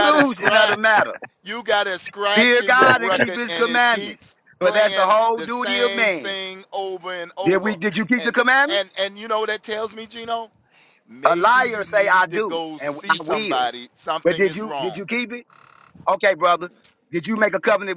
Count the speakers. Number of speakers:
2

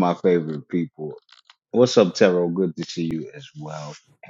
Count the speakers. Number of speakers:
1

